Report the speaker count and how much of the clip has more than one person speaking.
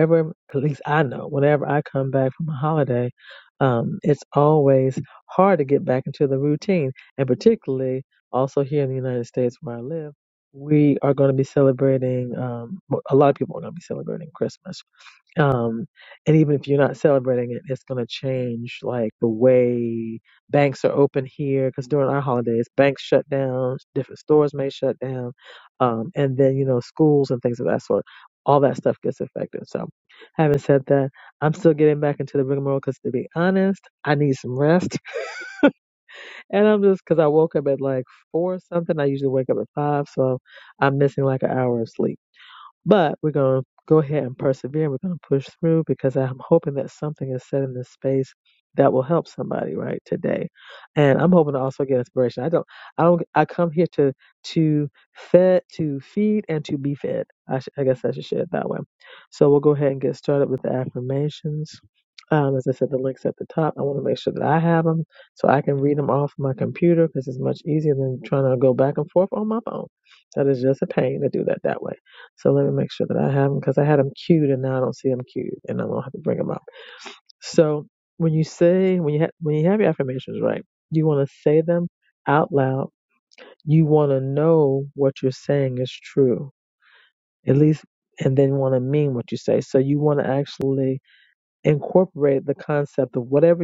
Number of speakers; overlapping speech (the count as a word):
one, no overlap